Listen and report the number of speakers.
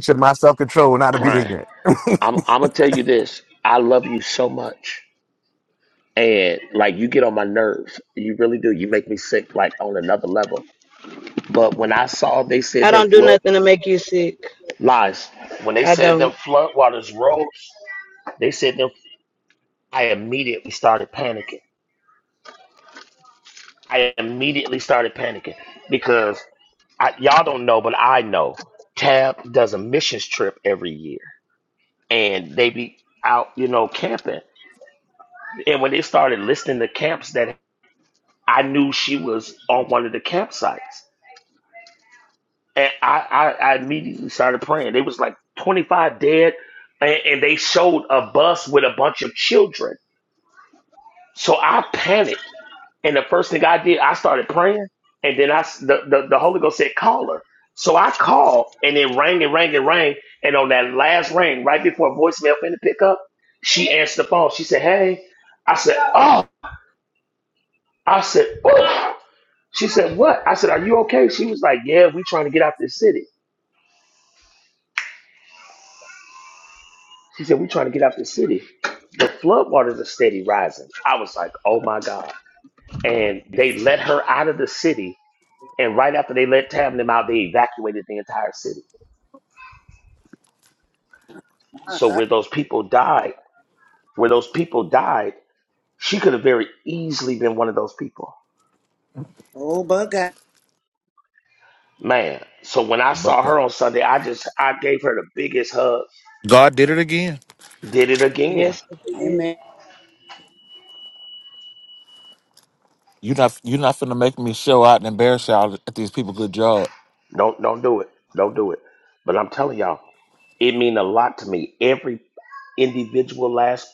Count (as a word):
five